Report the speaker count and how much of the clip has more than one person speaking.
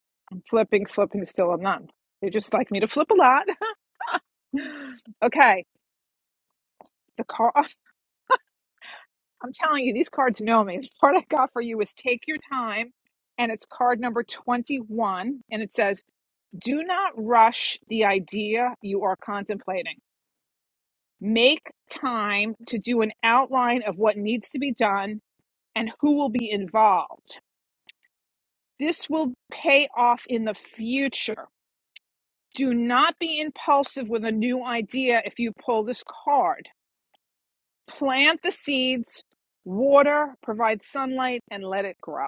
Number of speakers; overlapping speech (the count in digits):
1, no overlap